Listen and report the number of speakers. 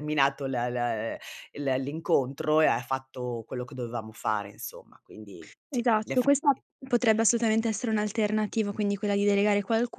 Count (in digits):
2